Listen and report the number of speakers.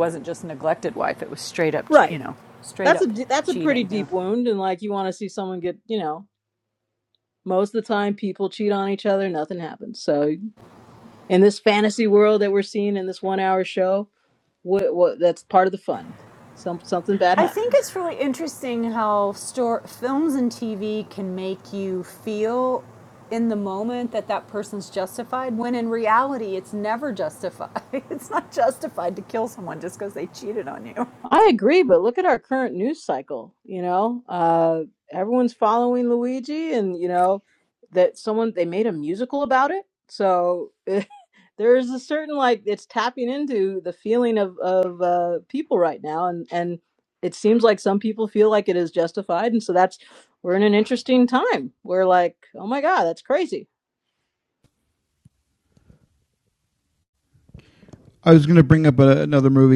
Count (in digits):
3